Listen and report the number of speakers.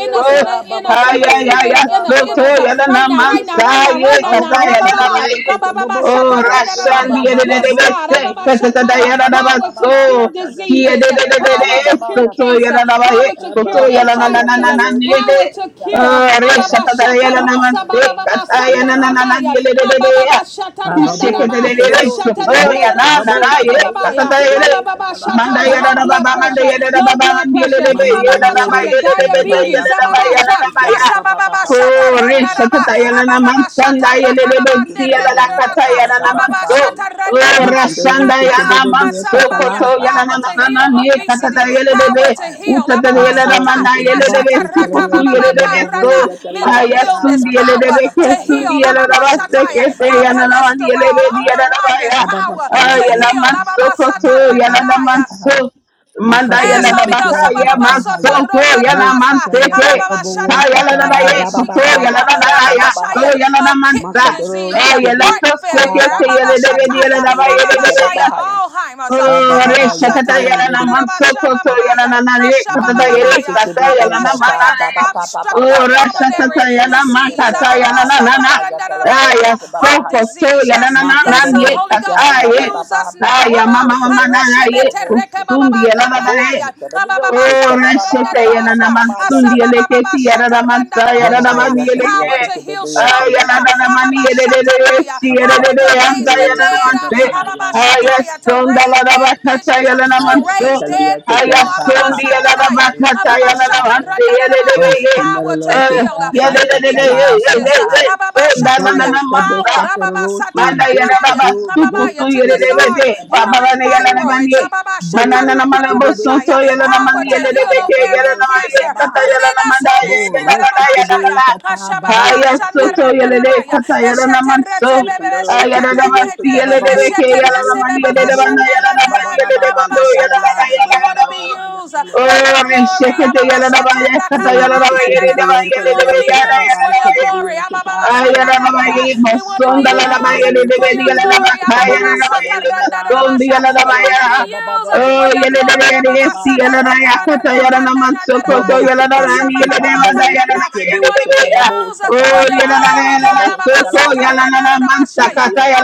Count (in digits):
3